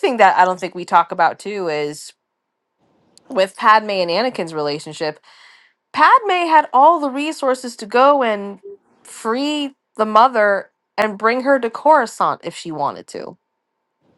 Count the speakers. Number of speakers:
1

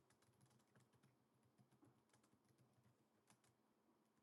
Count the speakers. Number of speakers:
0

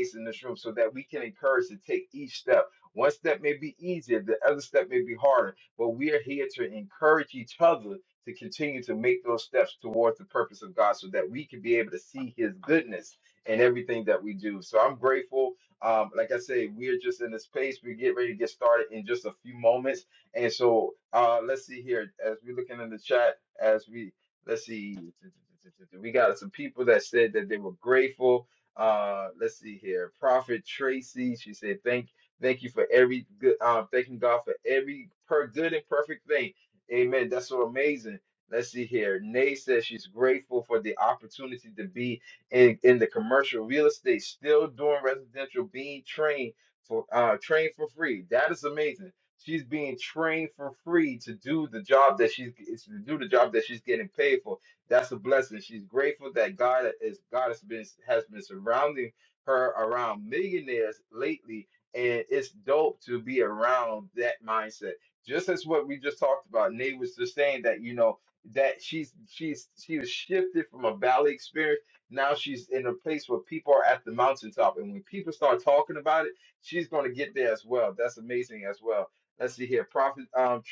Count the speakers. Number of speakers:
1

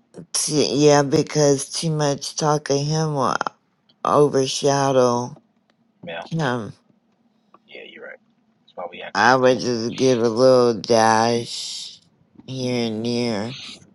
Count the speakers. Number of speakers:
2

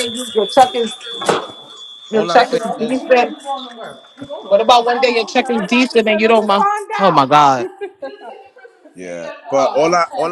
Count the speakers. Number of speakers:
3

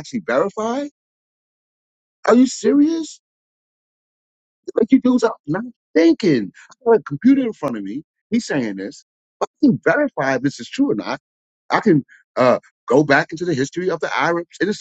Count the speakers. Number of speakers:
1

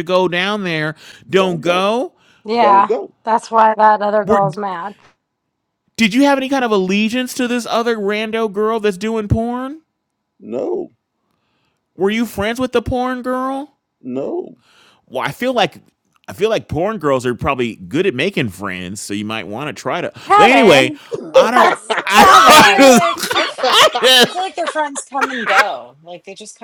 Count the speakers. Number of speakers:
4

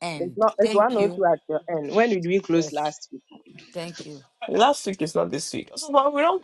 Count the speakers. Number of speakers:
3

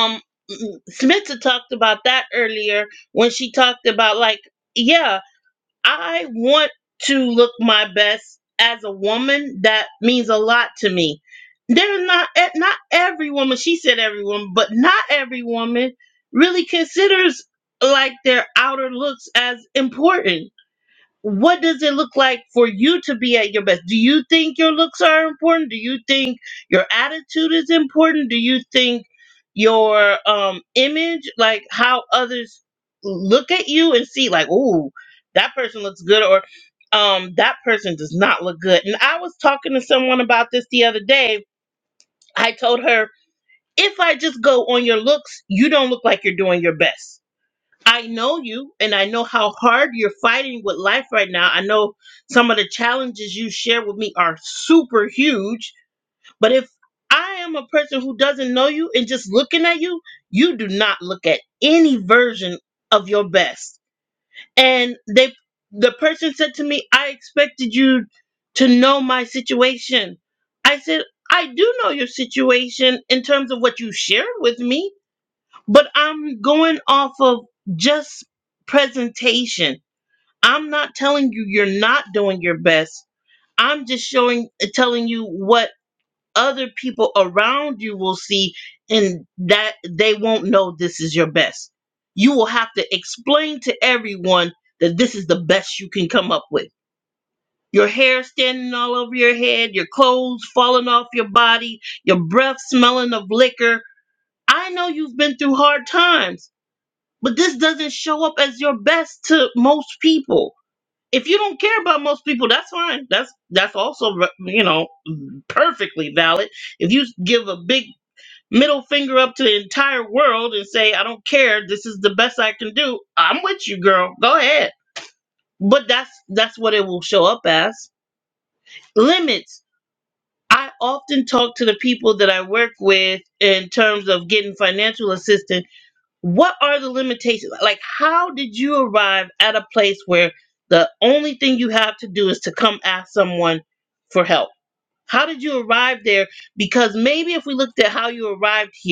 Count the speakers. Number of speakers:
1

